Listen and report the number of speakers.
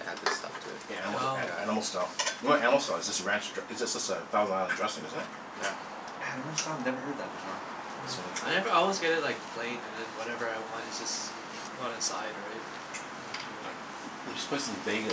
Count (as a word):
four